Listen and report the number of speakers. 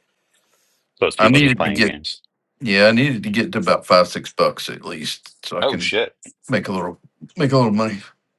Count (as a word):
two